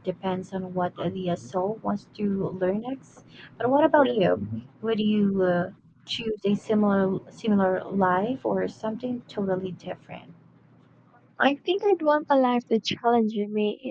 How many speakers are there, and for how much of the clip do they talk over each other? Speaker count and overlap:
2, no overlap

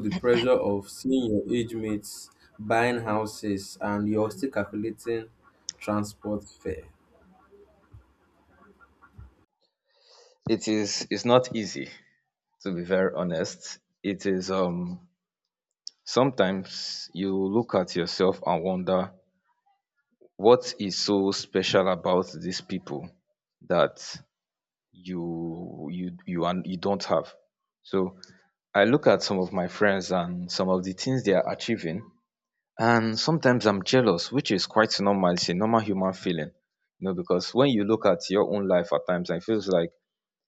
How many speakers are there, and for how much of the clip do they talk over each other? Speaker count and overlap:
2, no overlap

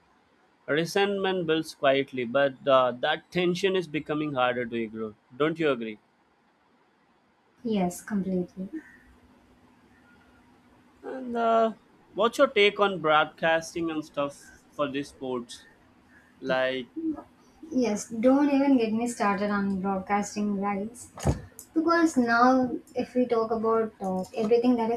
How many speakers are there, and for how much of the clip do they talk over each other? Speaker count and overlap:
2, no overlap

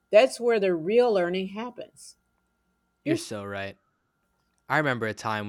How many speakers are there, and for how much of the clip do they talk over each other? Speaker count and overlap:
2, about 3%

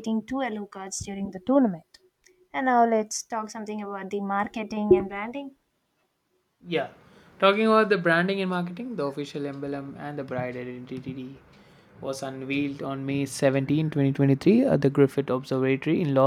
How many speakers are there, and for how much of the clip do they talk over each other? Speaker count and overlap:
2, no overlap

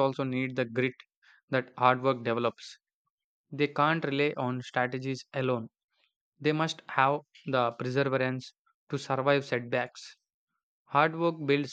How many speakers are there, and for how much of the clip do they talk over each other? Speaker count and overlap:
1, no overlap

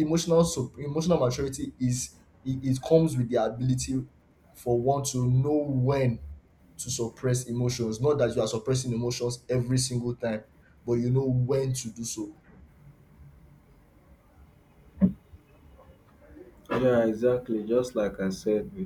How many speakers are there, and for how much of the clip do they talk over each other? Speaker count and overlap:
2, no overlap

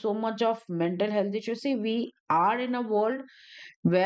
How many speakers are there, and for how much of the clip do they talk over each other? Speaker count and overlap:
1, no overlap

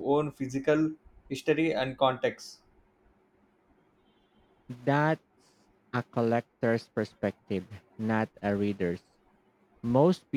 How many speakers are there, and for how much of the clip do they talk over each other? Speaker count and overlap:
2, no overlap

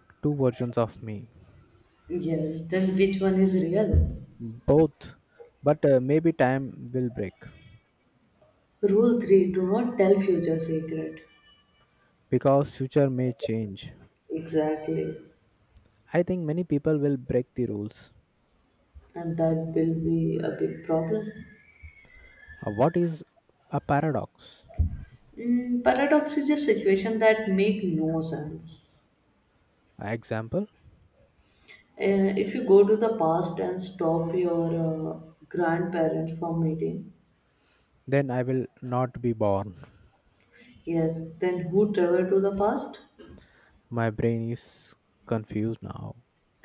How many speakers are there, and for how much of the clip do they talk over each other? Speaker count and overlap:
2, no overlap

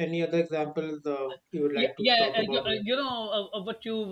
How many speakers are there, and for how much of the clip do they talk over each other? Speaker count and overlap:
2, about 22%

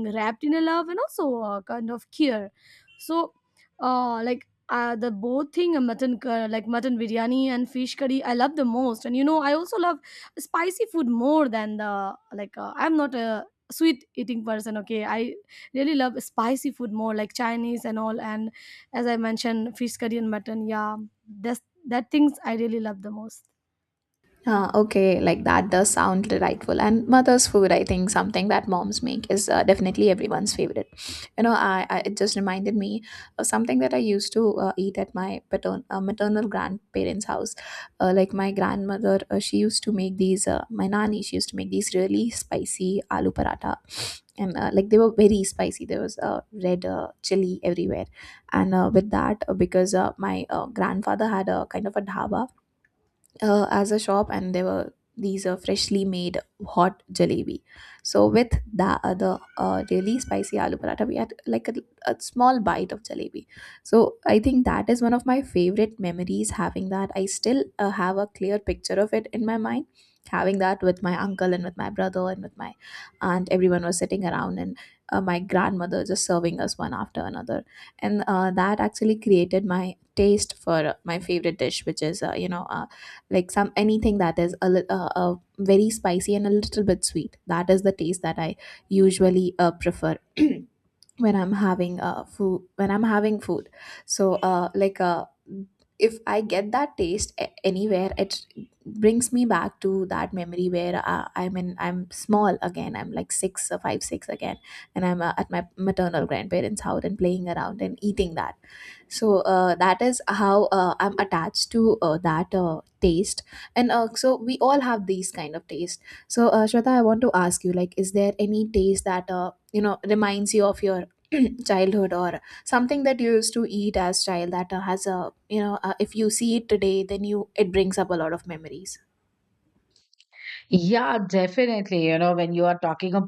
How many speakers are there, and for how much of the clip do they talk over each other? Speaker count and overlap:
3, no overlap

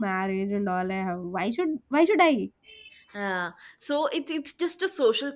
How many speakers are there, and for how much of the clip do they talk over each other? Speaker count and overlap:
2, no overlap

